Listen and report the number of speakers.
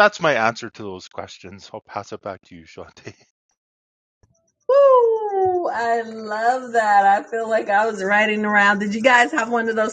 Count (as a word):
two